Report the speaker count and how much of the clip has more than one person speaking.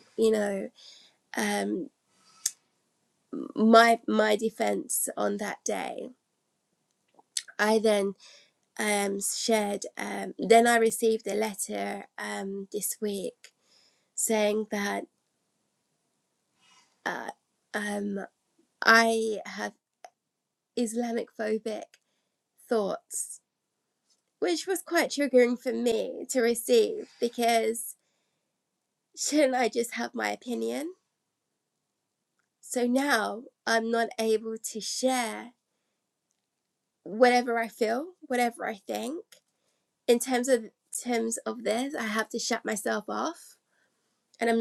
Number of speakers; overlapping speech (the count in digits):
1, no overlap